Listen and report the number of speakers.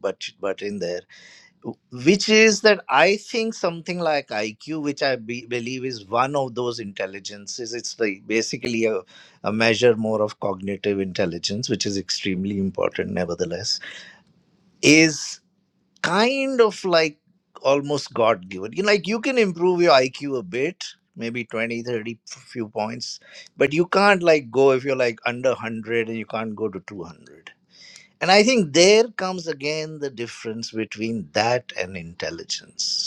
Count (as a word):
one